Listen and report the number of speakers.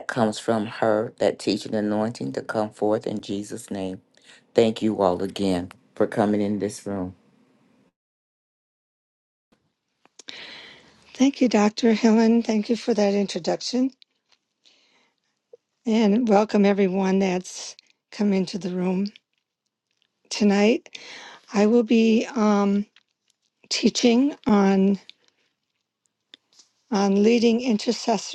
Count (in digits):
2